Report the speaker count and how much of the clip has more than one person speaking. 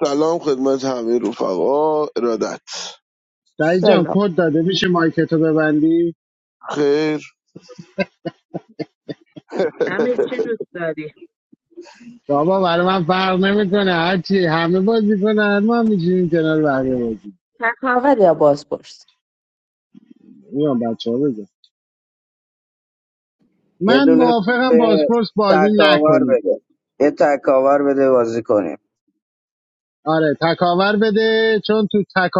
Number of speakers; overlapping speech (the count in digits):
4, about 7%